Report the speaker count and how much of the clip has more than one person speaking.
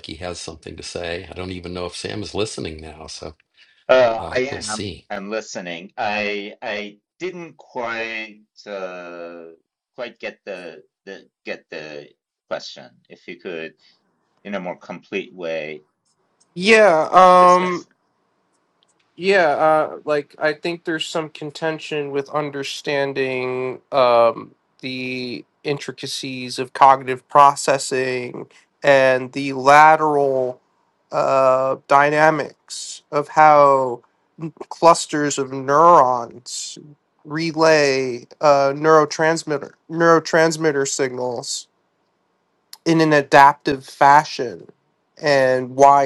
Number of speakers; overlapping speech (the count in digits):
3, about 3%